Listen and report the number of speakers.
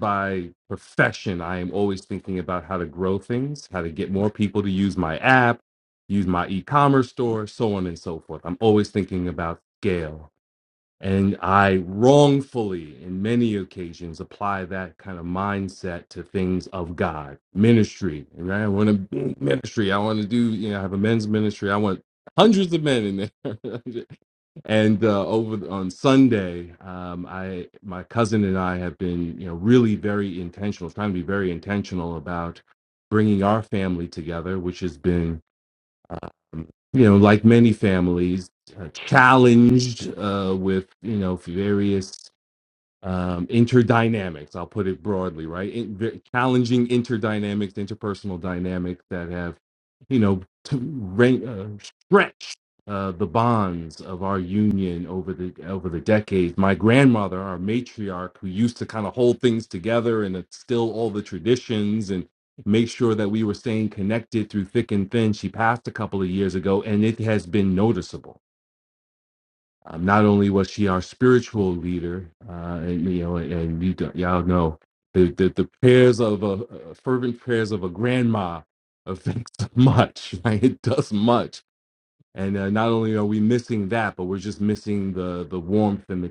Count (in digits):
1